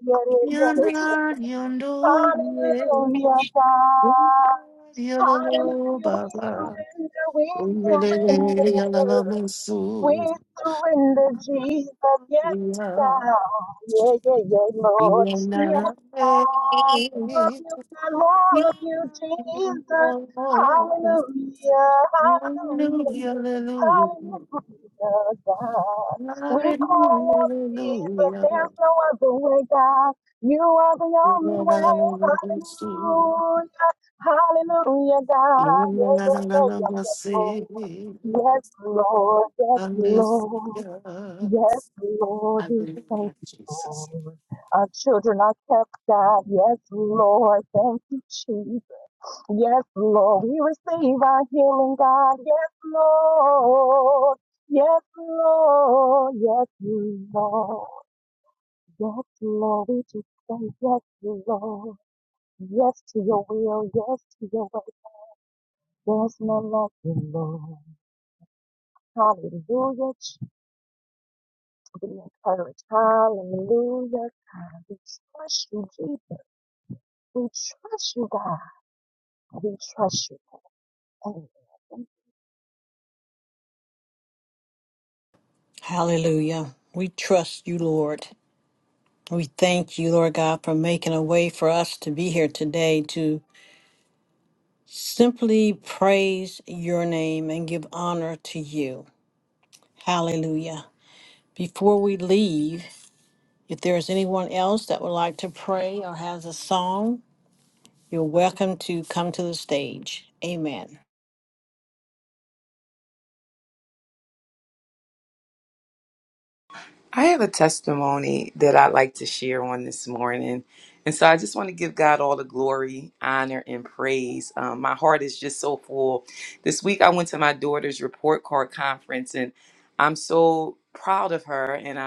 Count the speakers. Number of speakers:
four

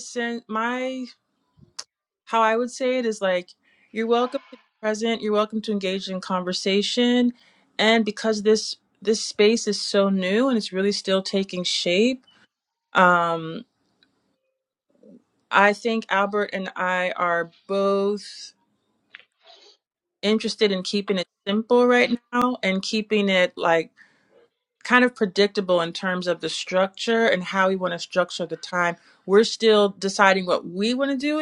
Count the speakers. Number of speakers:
one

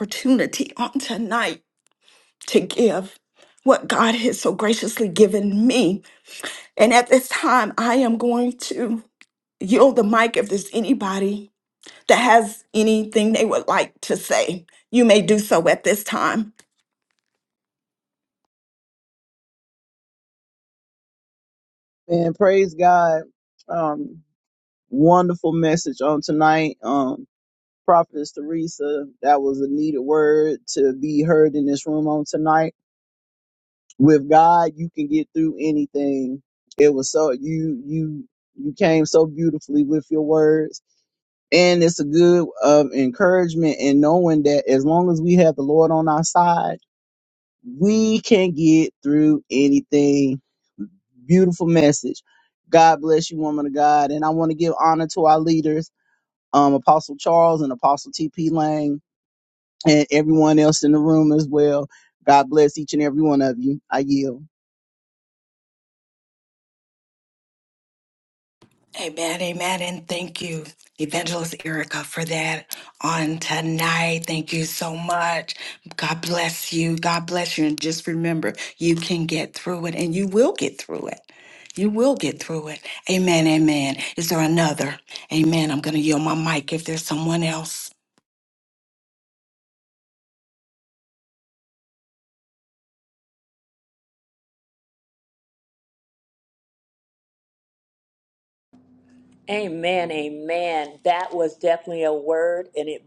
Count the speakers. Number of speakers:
three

